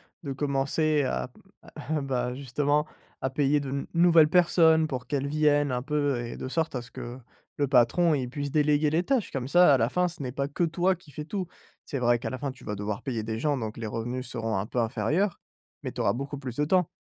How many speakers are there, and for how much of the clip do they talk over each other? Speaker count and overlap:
one, no overlap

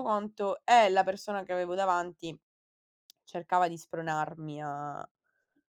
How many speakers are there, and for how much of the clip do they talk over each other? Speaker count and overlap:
one, no overlap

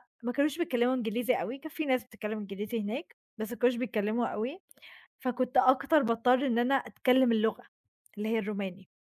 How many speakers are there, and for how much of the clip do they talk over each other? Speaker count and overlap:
one, no overlap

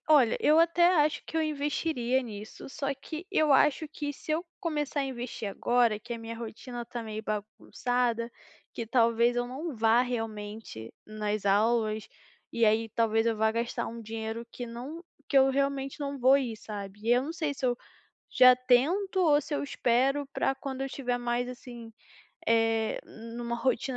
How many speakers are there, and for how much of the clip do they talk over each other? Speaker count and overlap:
one, no overlap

